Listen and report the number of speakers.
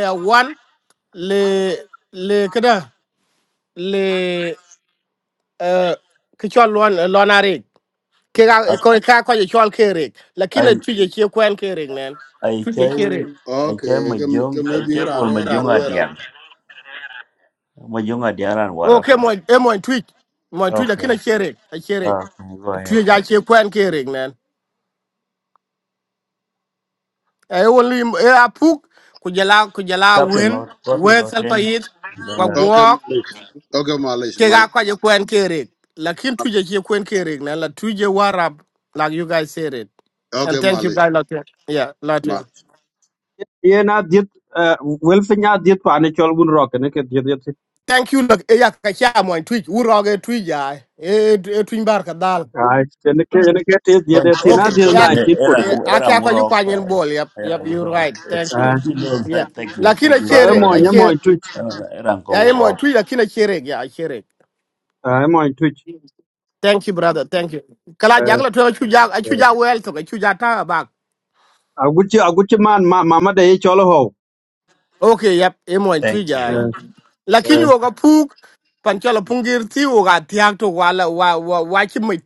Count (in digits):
4